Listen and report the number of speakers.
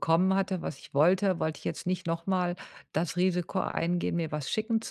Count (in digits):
1